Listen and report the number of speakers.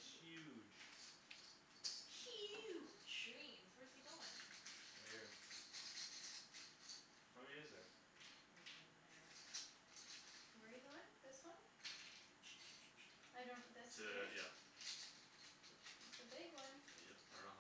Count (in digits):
4